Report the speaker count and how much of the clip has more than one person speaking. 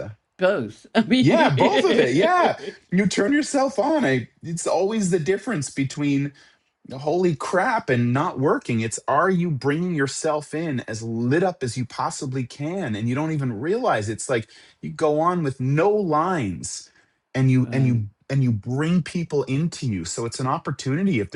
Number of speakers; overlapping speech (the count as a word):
two, about 2%